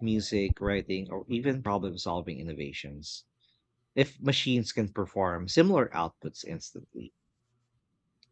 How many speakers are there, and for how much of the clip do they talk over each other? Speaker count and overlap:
one, no overlap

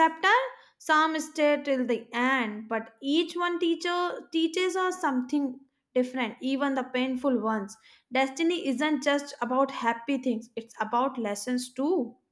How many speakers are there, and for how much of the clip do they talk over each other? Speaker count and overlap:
one, no overlap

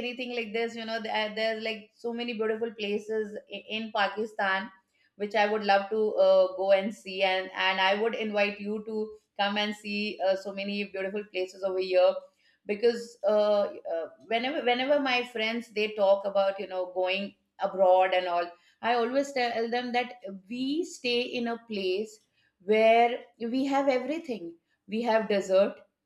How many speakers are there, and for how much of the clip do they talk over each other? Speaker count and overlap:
one, no overlap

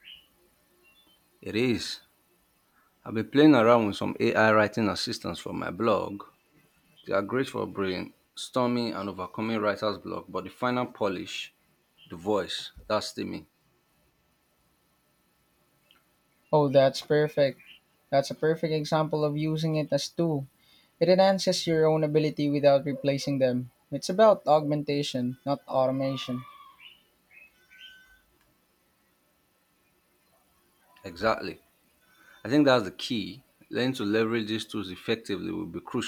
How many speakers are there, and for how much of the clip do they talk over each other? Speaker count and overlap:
two, no overlap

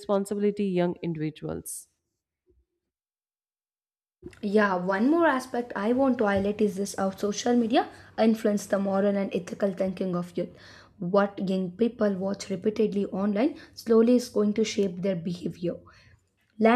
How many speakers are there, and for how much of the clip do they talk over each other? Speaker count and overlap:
two, no overlap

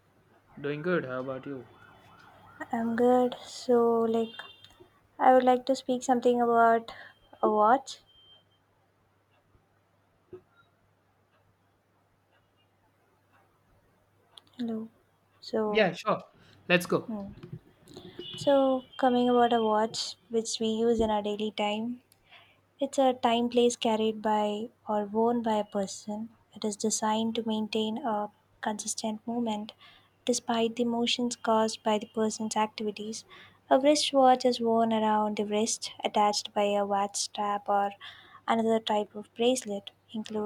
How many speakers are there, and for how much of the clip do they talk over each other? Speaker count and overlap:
two, under 1%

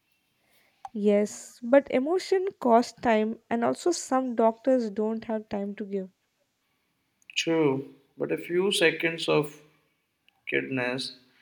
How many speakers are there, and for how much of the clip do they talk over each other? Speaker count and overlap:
two, no overlap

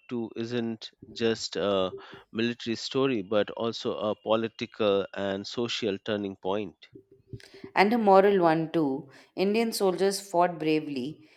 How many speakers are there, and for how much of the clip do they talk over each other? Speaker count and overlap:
two, no overlap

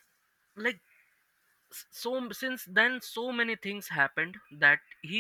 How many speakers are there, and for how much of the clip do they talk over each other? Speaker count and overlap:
one, no overlap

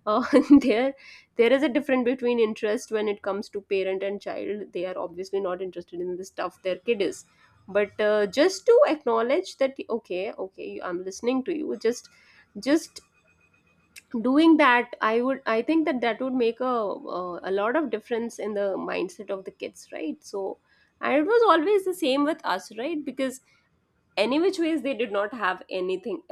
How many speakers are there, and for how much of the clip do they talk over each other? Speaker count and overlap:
one, no overlap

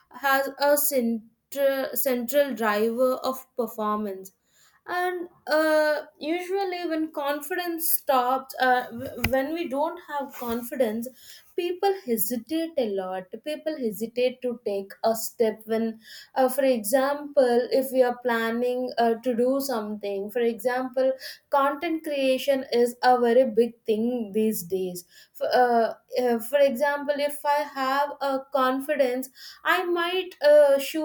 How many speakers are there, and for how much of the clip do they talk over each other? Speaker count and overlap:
one, no overlap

